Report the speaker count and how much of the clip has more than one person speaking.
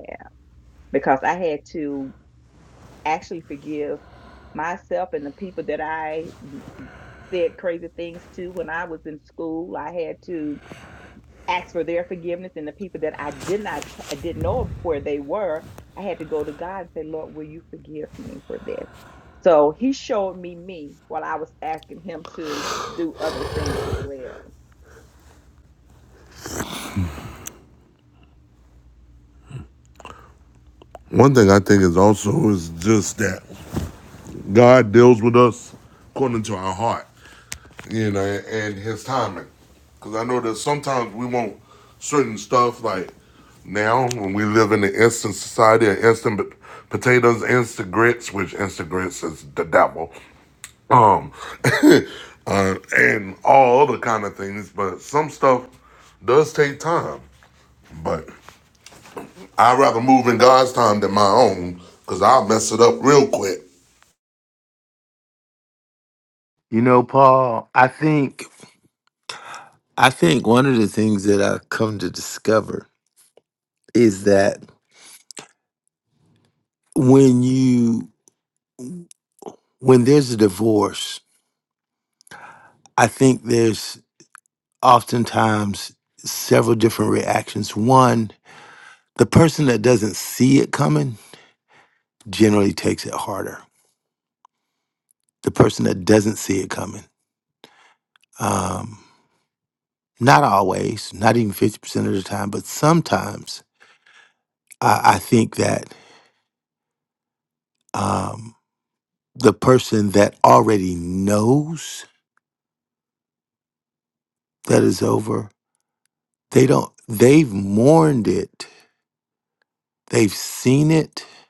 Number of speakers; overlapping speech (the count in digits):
3, no overlap